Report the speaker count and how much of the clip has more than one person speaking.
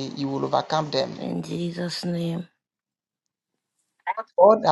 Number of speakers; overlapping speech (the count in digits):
2, about 1%